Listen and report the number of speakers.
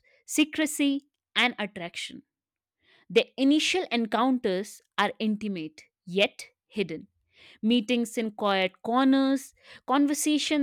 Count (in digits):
1